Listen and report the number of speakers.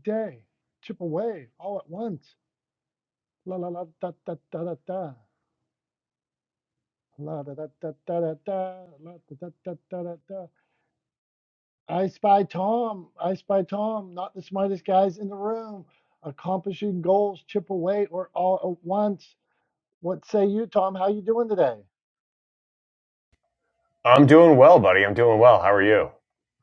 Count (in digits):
2